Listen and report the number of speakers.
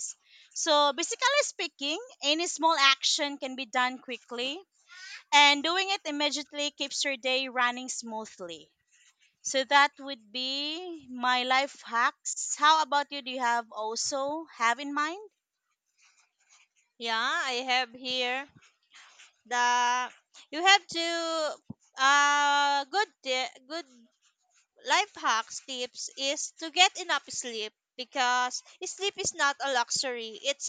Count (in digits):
2